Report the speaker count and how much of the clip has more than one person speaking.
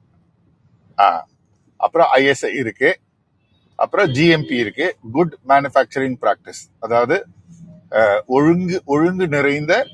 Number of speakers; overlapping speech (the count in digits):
1, no overlap